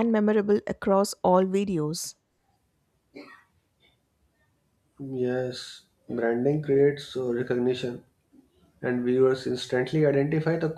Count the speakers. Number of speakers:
2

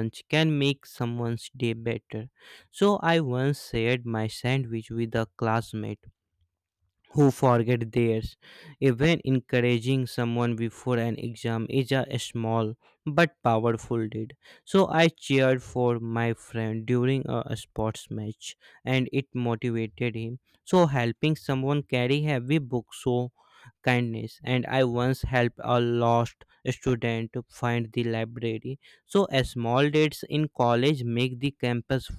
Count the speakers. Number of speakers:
1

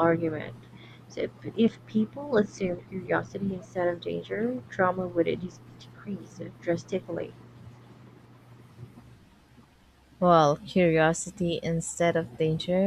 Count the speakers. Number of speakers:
2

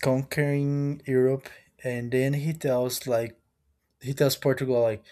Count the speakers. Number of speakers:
1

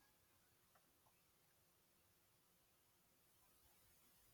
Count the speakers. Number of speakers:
0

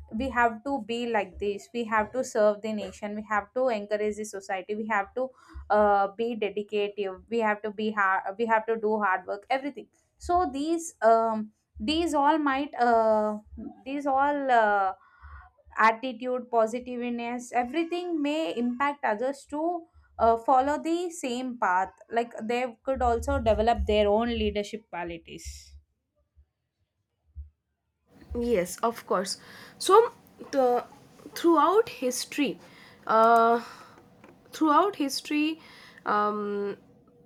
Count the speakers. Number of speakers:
2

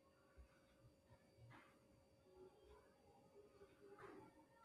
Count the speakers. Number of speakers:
0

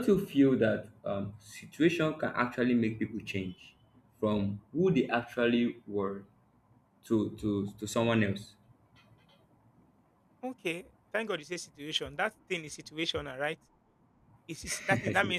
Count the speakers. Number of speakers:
2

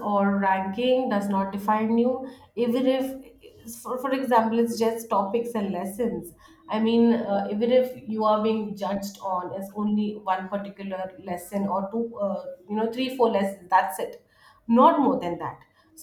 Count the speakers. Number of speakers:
1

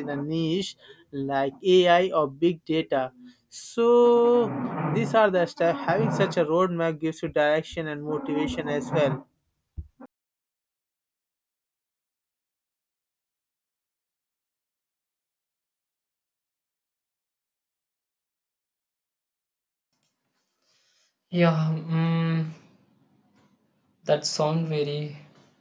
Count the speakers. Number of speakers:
2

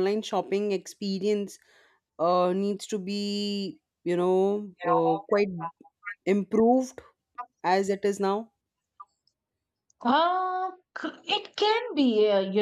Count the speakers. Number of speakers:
2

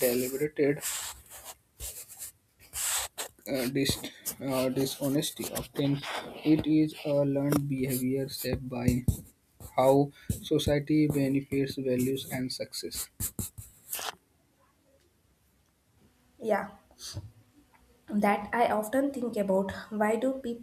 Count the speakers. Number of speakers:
2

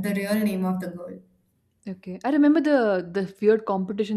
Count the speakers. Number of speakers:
2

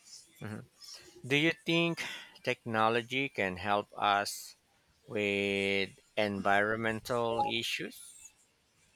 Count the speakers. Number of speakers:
1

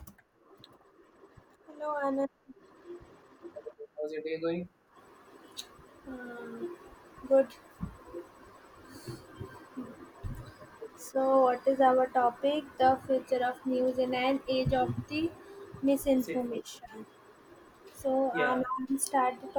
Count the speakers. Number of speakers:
2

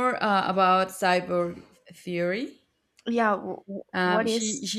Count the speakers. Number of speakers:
2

